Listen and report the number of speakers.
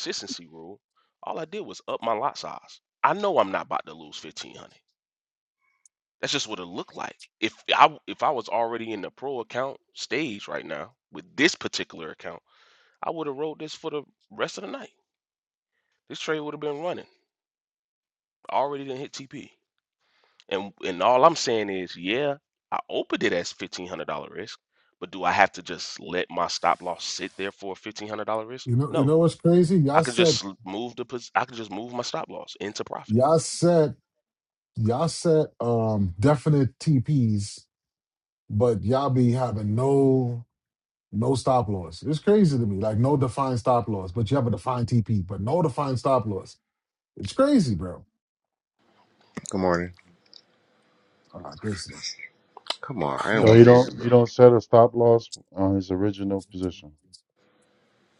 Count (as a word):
four